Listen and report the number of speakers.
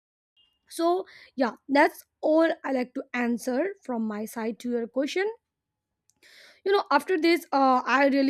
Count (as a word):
one